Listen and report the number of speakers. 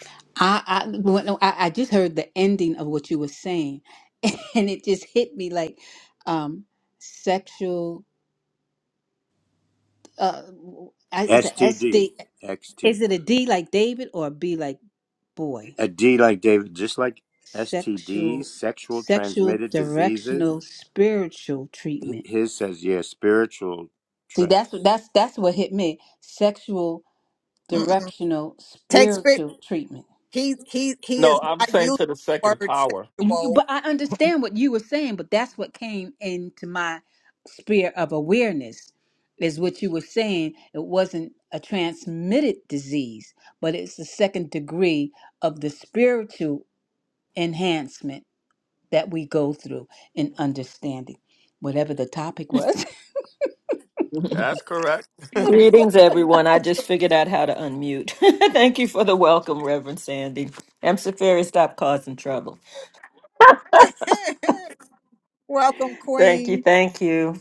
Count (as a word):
five